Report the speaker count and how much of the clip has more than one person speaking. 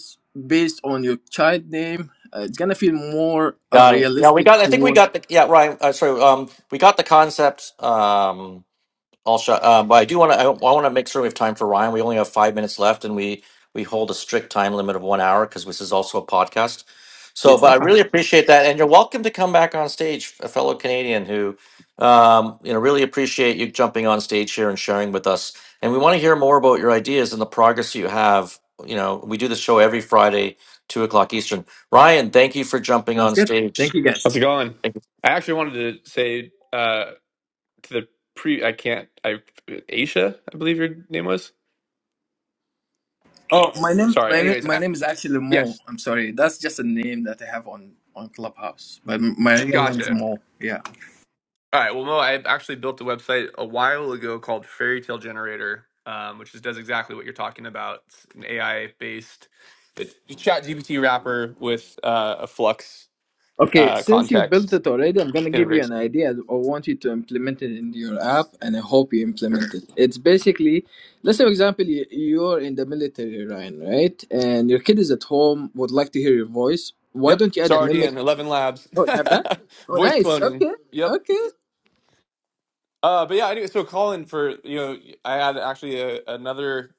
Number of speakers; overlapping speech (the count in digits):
3, about 8%